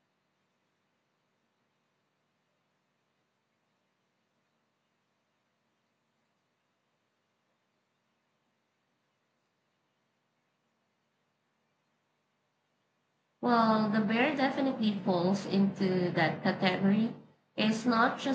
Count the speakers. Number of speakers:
1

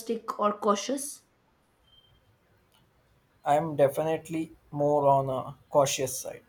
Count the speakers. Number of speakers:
2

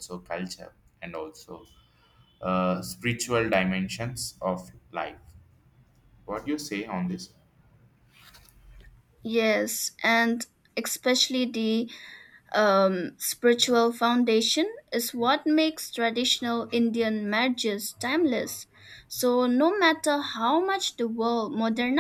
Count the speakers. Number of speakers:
2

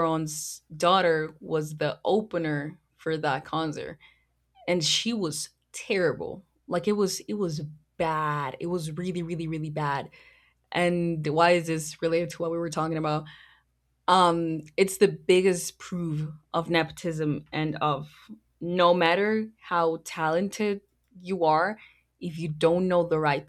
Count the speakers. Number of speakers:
1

